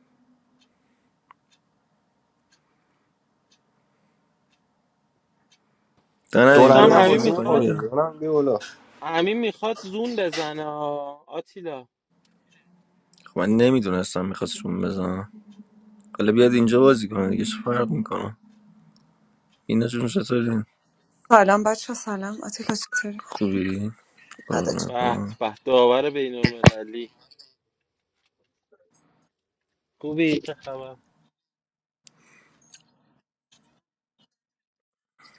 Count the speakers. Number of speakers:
four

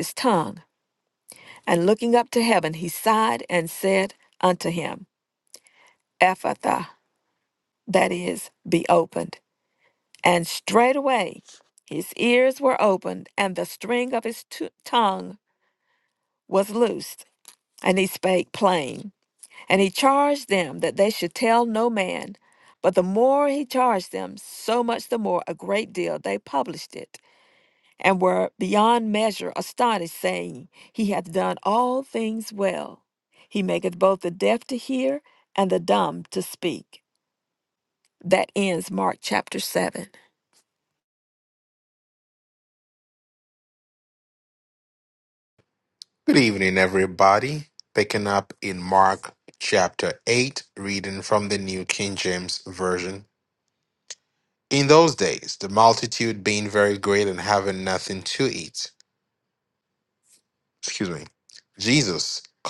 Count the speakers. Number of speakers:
two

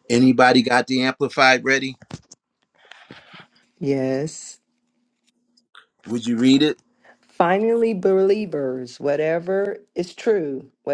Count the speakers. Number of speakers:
two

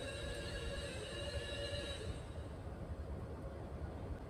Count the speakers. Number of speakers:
zero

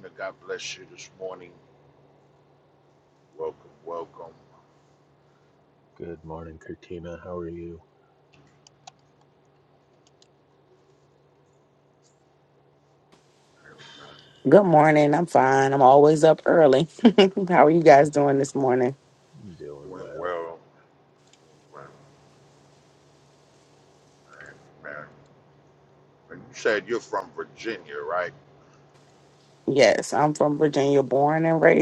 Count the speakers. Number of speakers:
three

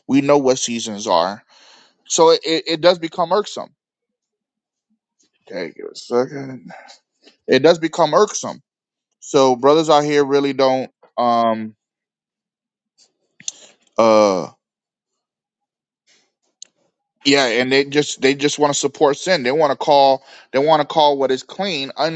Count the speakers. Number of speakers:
one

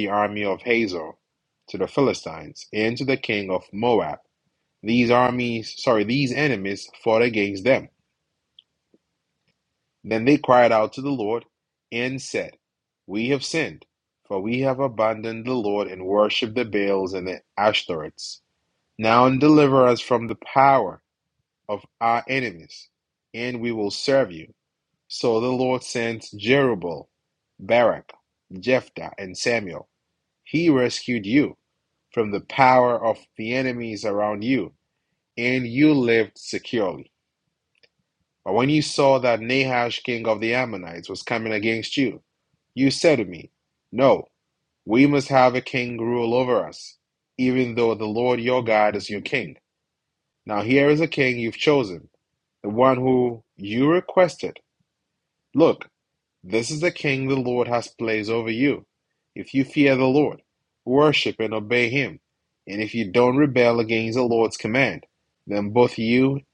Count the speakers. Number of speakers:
one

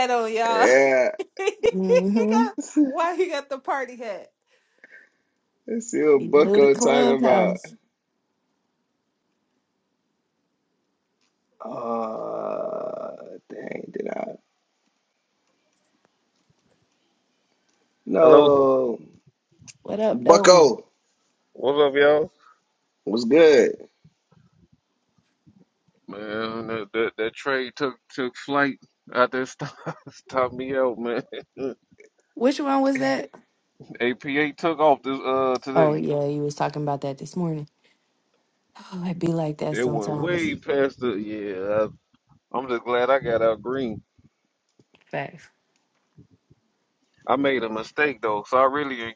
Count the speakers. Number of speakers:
four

